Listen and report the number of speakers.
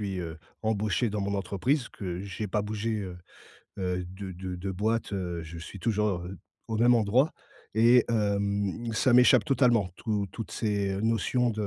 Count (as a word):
one